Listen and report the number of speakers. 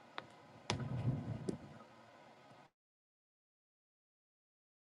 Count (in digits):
0